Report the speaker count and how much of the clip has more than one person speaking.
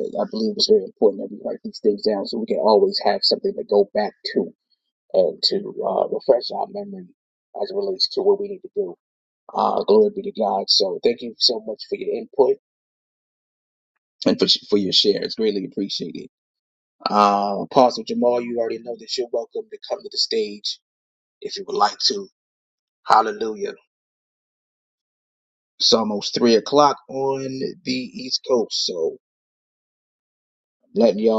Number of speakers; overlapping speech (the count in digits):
1, no overlap